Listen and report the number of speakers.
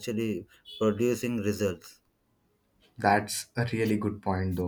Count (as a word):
two